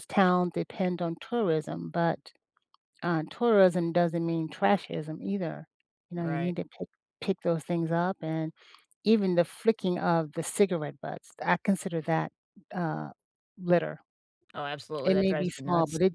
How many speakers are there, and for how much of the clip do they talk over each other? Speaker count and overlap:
two, about 8%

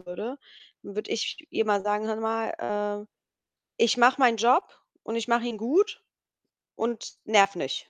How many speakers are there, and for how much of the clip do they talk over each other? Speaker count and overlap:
one, no overlap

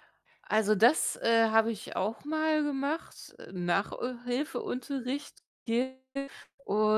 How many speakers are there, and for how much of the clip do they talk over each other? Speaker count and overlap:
one, no overlap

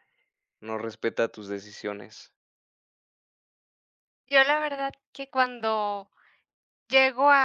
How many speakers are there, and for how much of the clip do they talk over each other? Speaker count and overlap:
two, no overlap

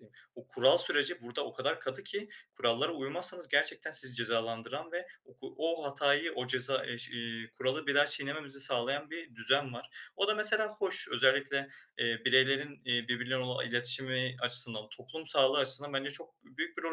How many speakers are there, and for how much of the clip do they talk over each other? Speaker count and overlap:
one, no overlap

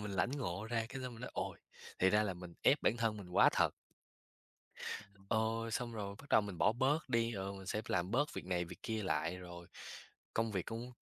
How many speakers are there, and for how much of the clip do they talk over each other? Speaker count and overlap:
one, no overlap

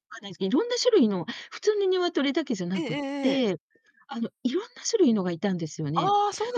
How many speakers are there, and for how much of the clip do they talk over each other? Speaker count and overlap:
two, about 13%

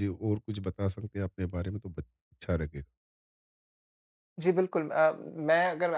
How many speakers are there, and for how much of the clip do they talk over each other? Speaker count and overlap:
two, no overlap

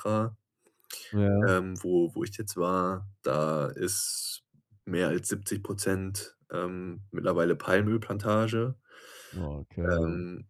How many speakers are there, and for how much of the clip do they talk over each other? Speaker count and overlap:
two, about 4%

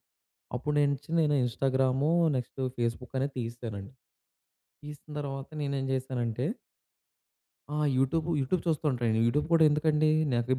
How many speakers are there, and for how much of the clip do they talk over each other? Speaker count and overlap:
one, no overlap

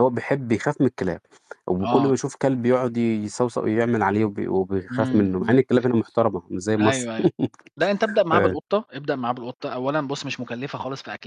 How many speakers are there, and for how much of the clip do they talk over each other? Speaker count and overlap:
two, about 13%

